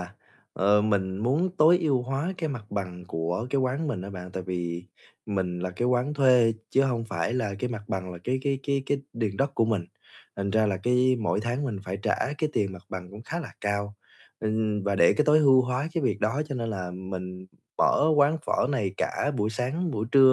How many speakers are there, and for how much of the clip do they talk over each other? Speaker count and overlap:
one, no overlap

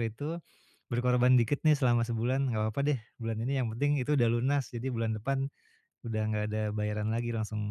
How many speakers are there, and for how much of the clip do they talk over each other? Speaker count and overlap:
one, no overlap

